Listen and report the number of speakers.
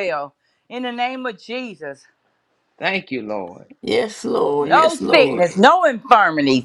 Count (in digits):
3